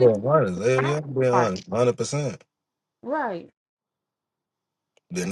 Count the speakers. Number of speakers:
two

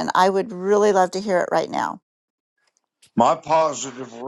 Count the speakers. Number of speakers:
two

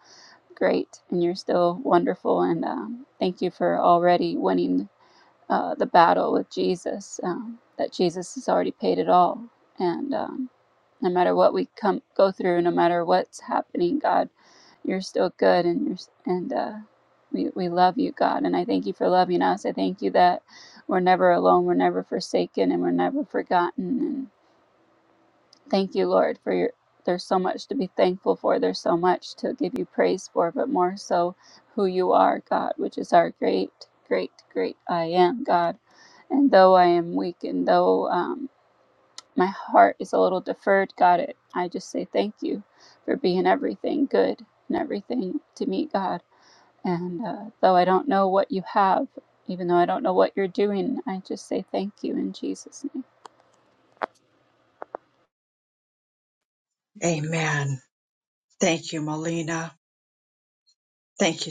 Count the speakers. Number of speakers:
two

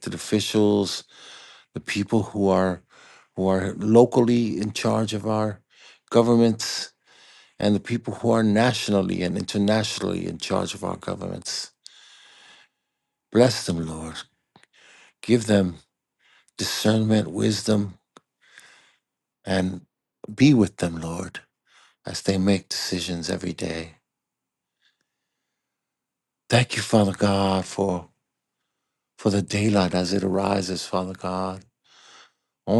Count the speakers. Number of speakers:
one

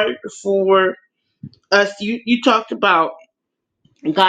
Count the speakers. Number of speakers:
one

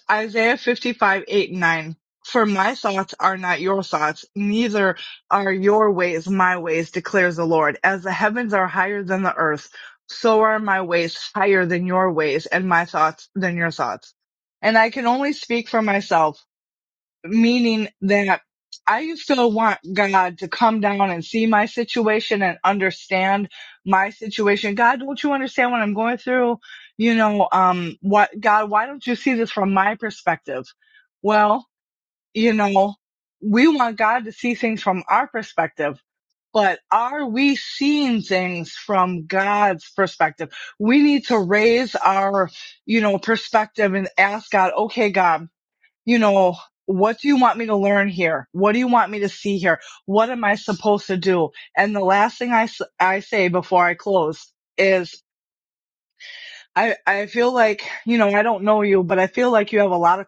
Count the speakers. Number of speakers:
one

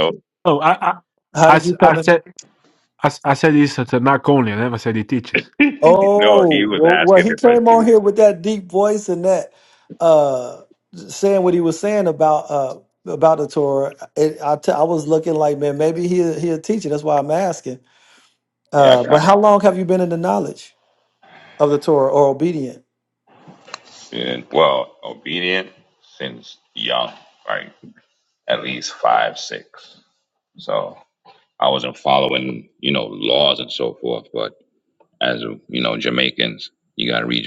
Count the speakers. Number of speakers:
three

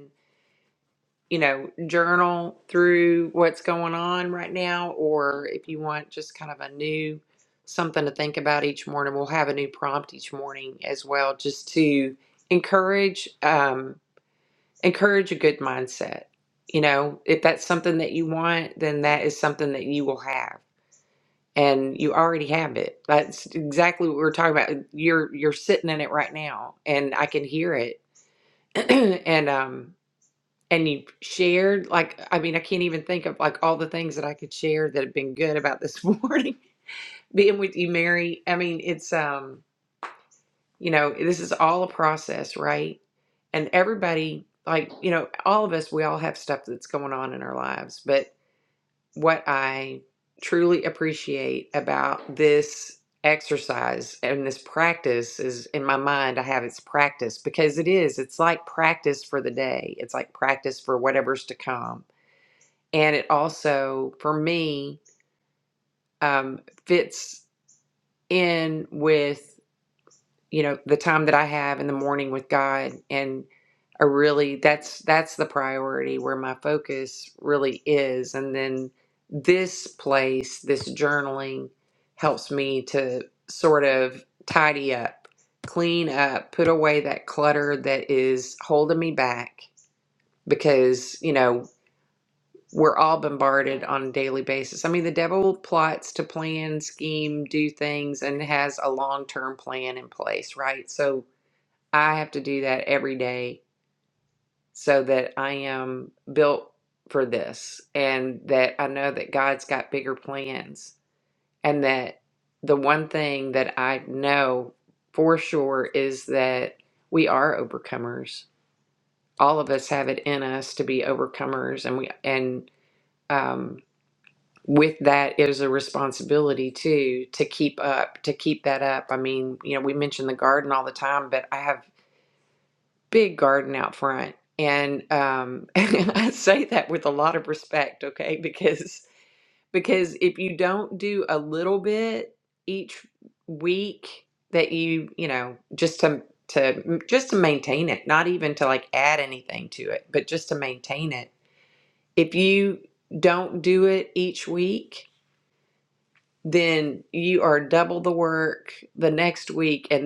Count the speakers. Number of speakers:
one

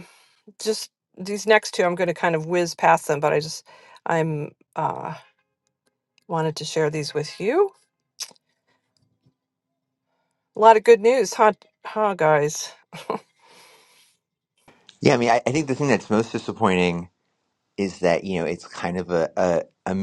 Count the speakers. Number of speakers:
two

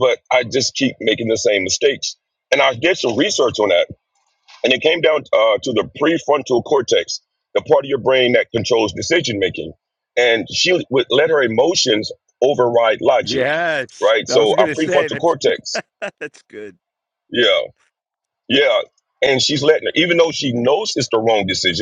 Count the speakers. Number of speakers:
two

